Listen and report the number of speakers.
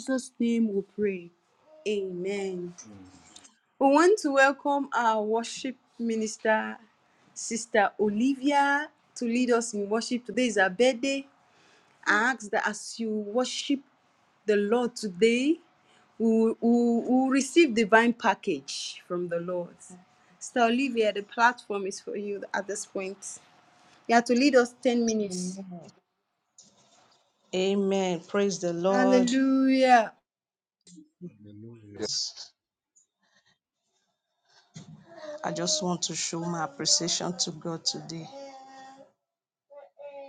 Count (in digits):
3